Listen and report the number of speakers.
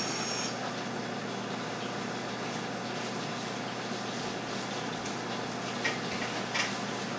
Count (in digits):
0